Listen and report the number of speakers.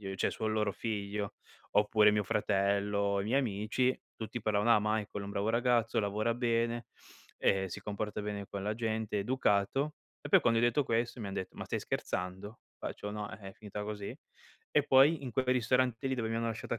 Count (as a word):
one